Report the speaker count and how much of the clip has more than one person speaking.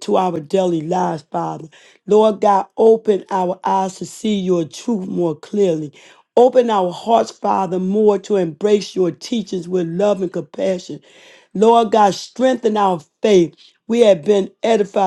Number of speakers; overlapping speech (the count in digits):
1, no overlap